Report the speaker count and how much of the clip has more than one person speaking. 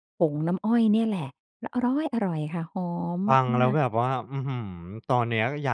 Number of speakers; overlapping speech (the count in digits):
2, about 3%